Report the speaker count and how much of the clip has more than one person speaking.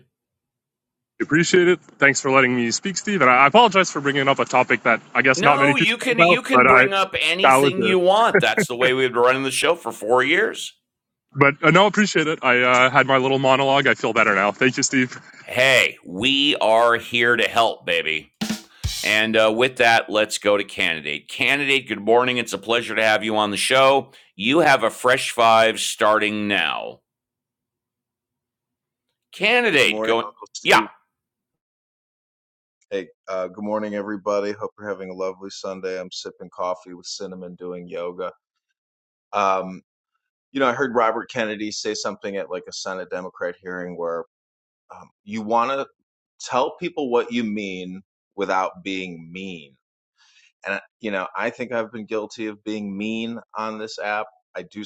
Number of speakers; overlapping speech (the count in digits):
3, about 5%